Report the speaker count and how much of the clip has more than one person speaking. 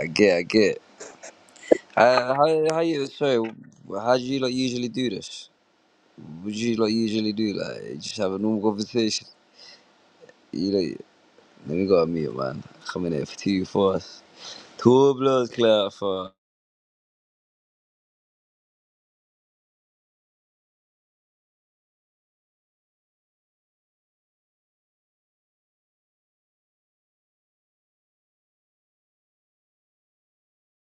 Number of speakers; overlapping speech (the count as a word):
one, no overlap